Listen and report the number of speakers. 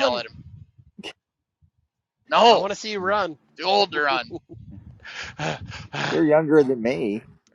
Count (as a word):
three